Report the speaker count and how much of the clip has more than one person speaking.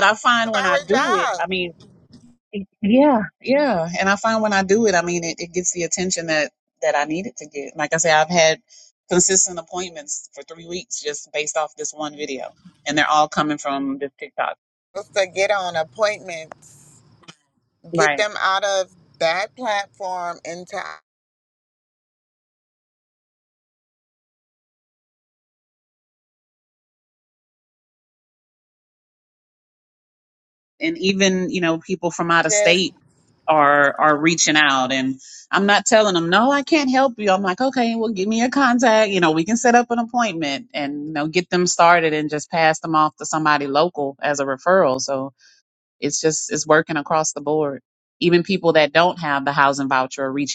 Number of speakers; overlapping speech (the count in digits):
2, about 2%